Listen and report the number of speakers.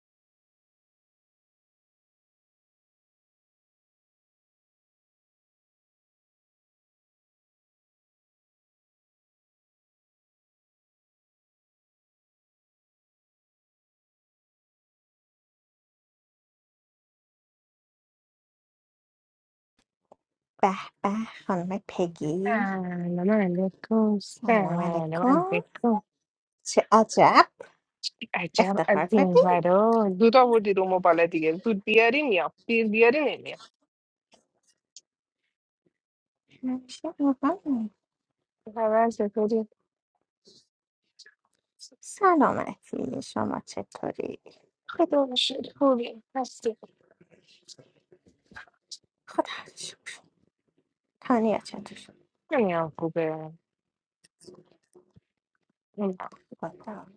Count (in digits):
2